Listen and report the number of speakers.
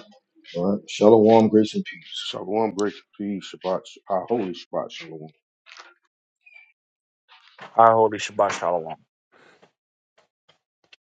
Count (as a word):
three